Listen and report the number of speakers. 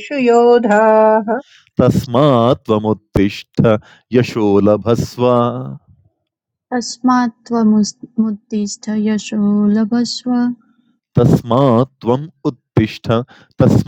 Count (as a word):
three